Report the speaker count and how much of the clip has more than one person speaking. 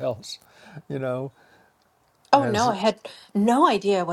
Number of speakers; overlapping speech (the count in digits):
2, about 10%